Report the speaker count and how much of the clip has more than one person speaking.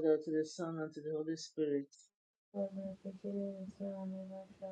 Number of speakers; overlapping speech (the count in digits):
2, no overlap